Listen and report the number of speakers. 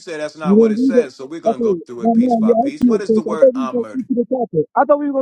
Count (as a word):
two